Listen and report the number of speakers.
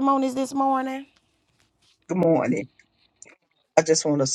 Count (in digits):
2